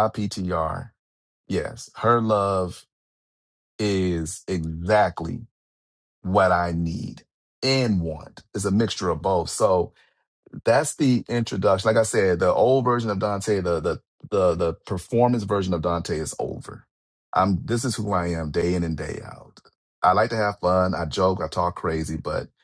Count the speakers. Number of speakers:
one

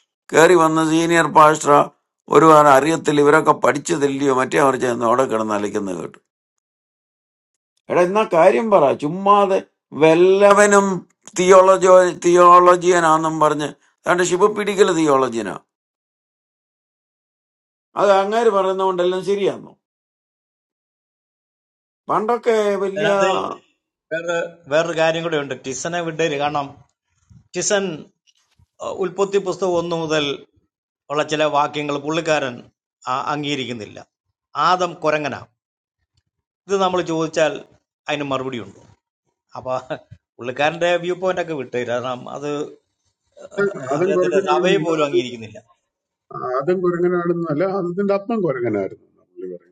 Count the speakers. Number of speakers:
three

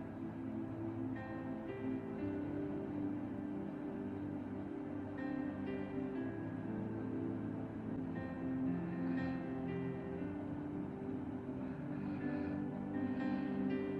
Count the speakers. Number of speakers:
zero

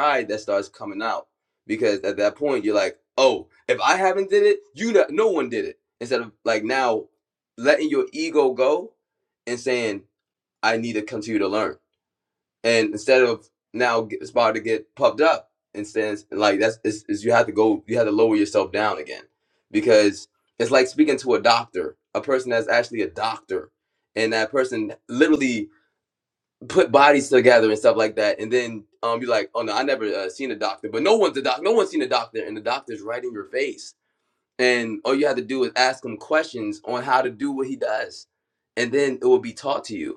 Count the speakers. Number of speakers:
one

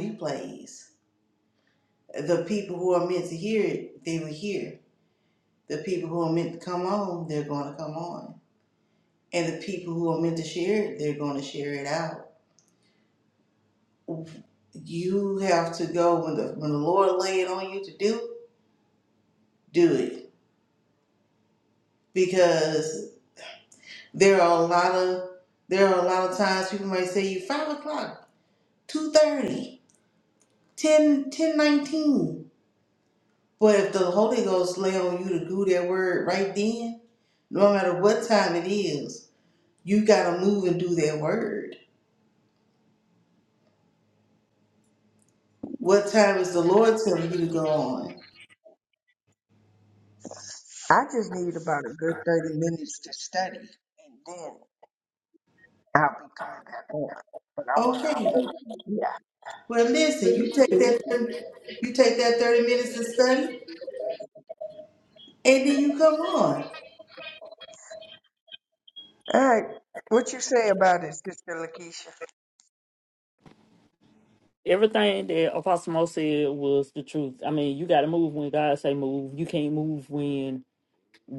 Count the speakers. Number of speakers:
three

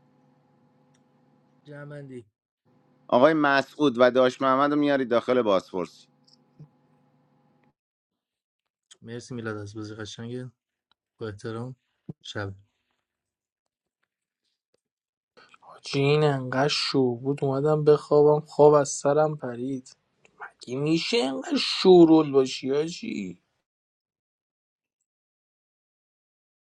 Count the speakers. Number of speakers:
three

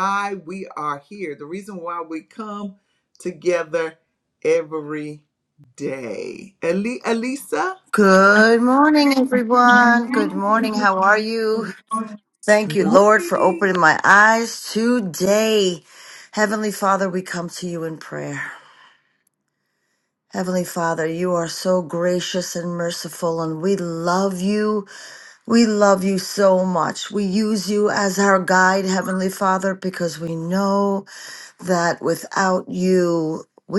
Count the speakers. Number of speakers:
two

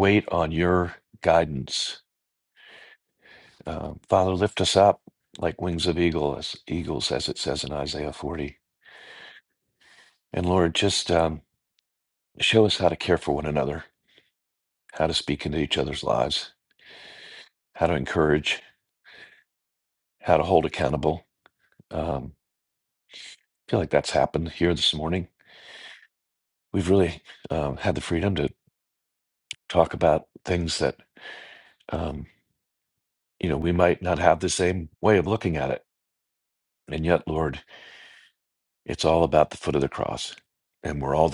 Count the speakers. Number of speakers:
one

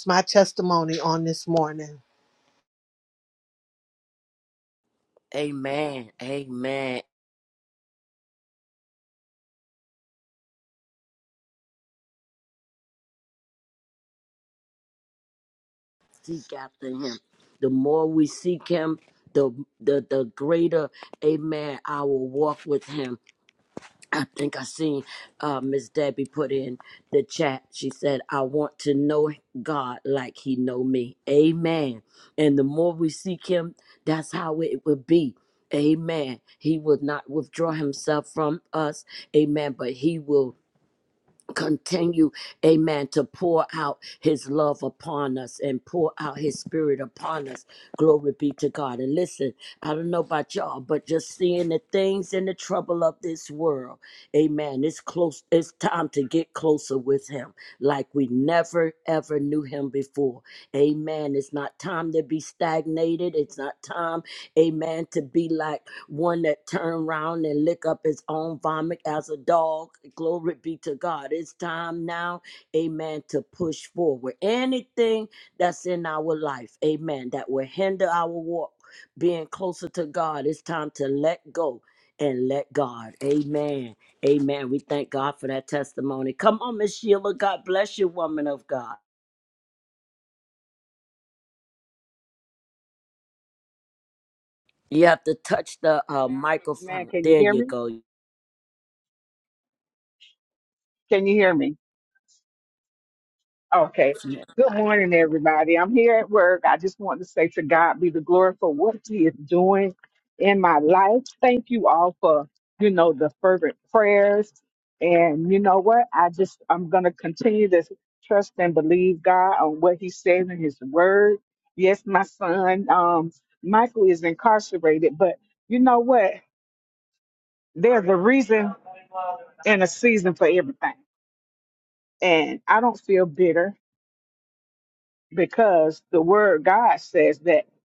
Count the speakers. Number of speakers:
three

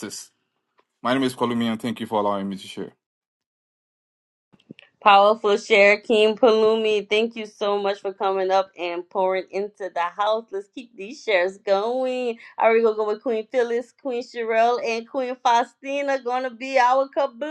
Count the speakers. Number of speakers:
two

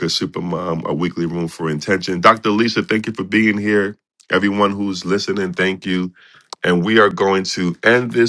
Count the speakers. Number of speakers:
one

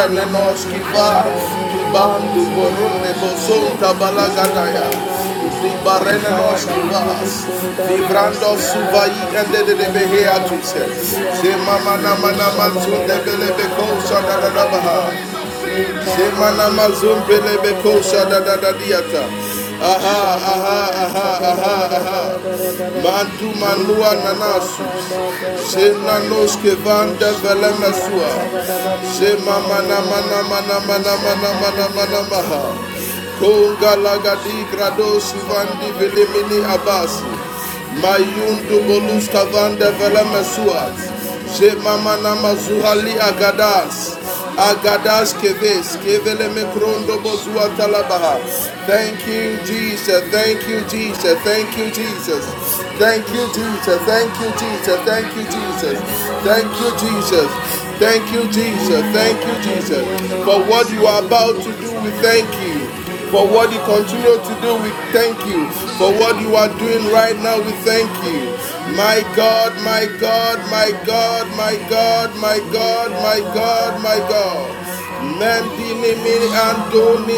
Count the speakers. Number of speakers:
two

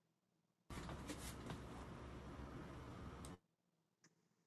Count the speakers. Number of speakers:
zero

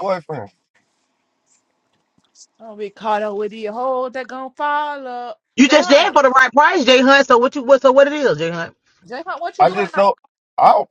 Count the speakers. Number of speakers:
three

